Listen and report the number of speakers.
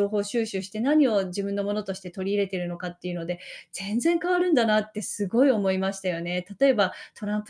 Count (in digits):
1